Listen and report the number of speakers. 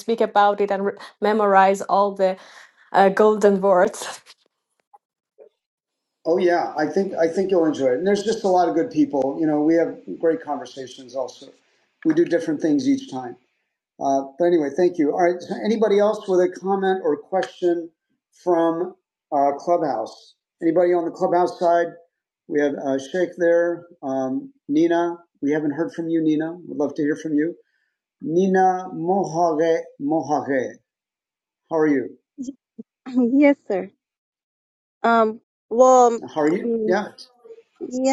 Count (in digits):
3